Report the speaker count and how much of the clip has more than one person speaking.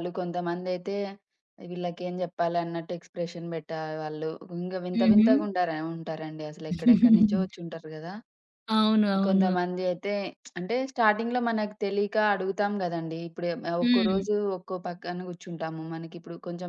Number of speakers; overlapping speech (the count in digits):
2, about 8%